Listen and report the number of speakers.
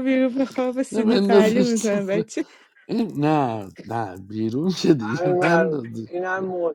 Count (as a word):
three